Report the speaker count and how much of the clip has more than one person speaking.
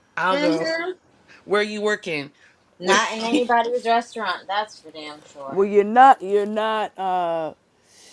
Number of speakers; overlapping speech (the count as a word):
three, about 7%